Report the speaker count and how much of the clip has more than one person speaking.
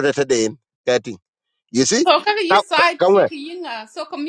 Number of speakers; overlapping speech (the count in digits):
2, about 10%